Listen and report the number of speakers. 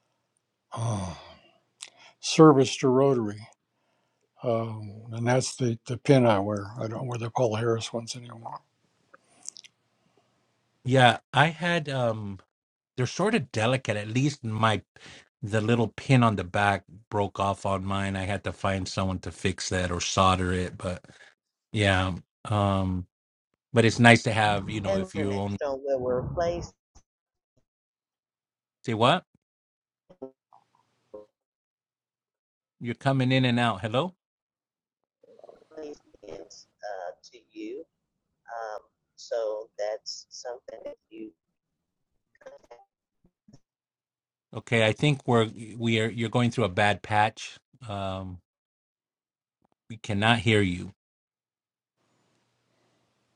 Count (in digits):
3